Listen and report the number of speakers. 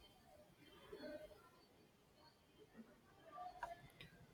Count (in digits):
0